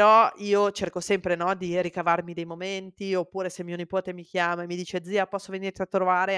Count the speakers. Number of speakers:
1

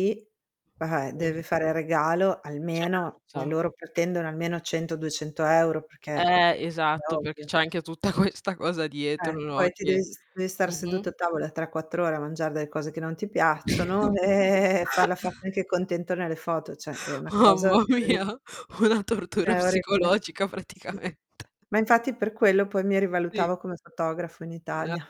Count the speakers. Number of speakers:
2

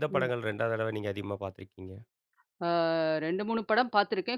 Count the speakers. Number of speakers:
2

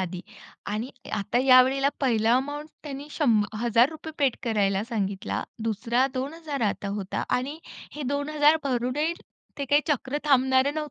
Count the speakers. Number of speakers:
1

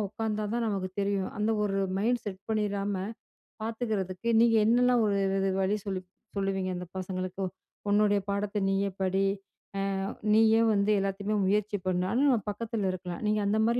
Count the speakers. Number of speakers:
1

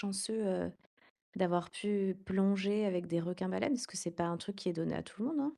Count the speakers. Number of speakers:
1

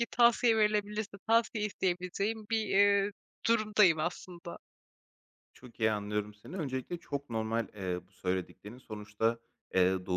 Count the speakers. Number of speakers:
2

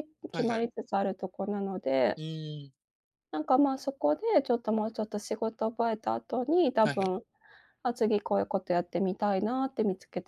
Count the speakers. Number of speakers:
2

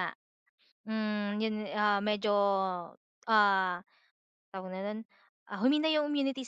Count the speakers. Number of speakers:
1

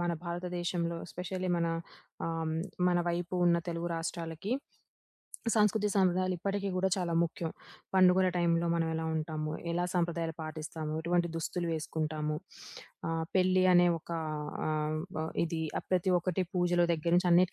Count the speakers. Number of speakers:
1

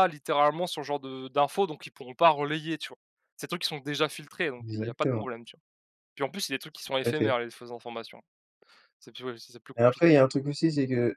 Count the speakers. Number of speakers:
2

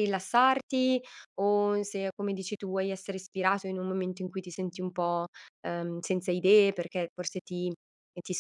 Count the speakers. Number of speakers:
1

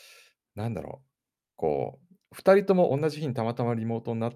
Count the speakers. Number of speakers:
1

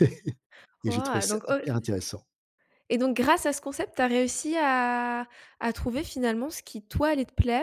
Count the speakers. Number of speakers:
2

